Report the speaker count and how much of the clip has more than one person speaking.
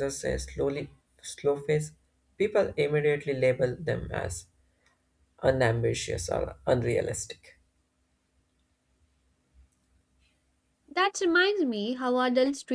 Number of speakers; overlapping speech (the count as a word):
two, no overlap